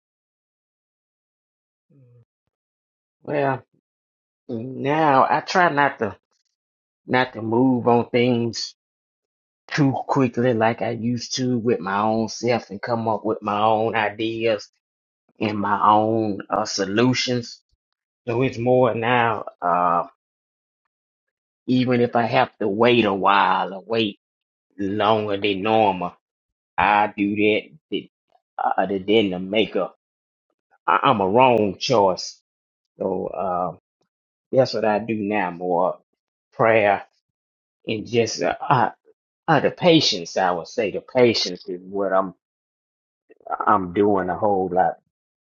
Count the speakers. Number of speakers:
one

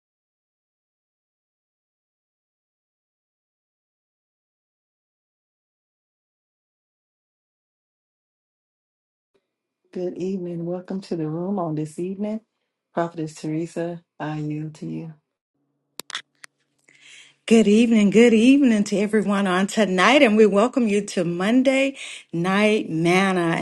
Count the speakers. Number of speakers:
two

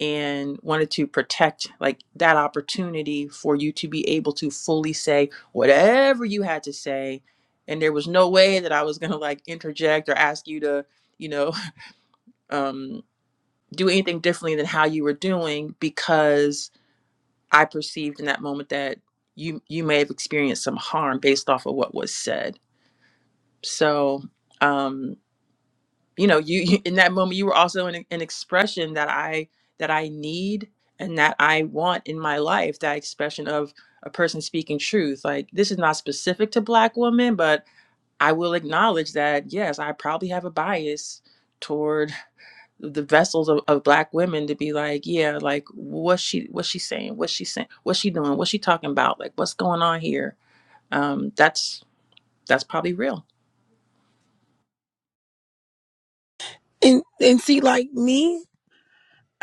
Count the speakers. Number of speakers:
two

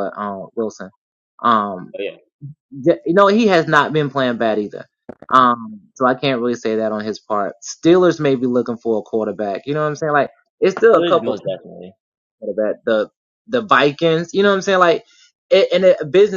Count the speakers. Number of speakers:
two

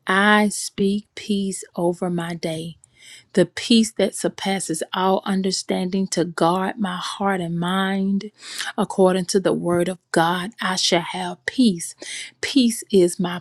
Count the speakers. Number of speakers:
one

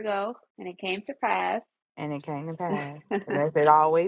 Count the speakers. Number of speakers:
two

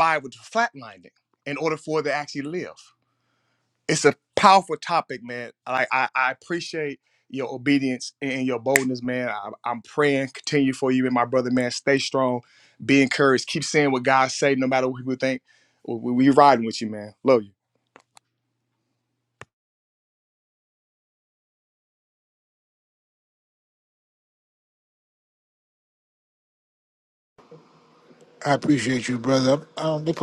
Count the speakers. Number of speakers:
two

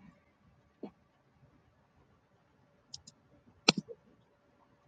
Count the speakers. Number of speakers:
zero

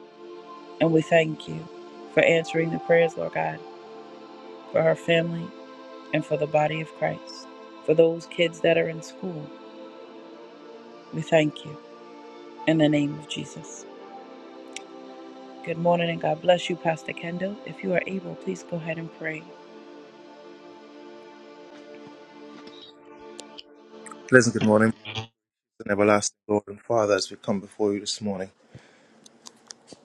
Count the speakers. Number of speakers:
two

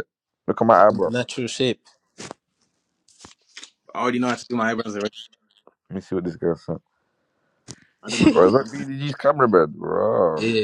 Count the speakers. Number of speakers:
three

